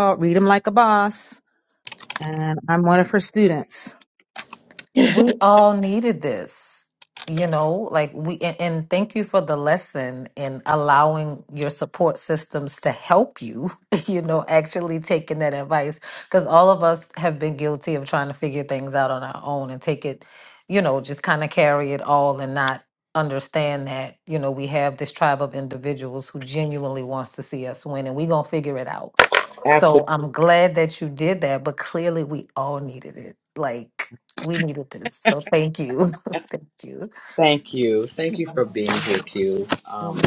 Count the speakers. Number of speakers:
3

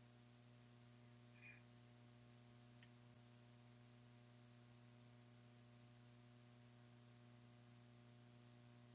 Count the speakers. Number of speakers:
0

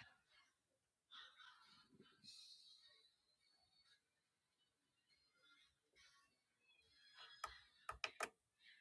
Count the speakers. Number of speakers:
0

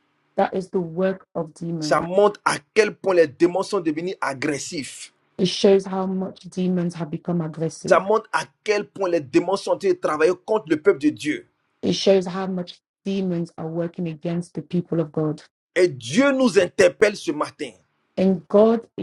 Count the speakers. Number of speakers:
2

